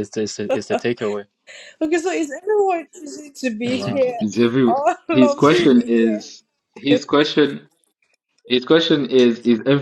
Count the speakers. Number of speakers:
3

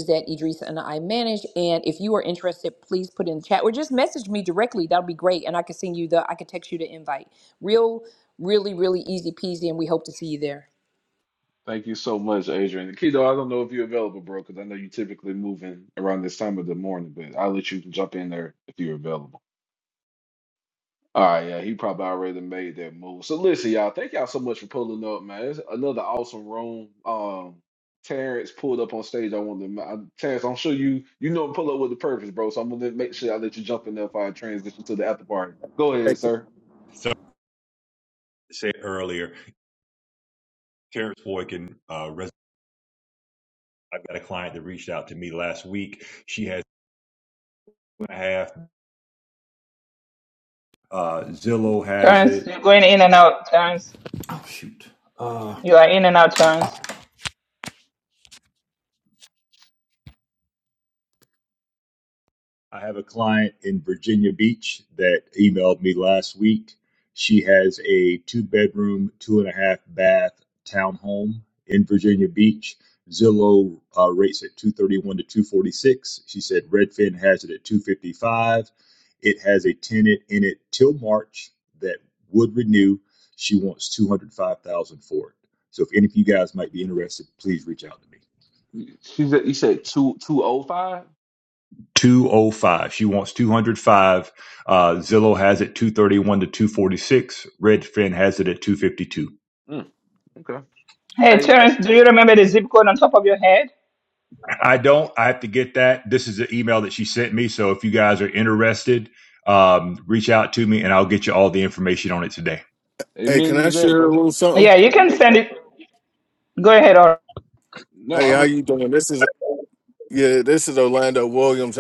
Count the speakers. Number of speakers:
5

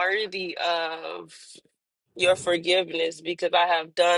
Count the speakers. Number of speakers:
1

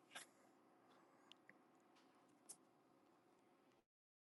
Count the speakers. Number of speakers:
0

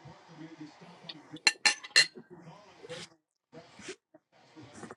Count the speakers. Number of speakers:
0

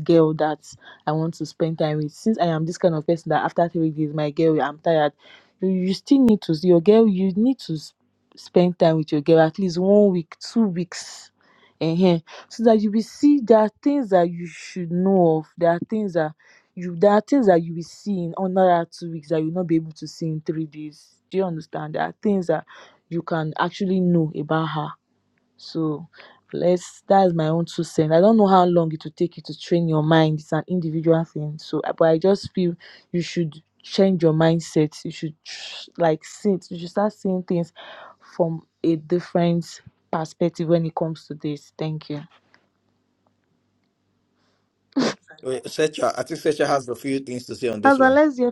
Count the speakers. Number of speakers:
2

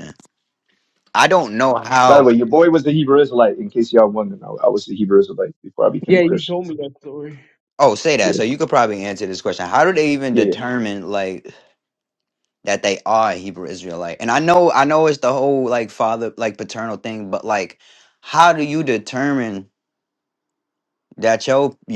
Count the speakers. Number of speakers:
3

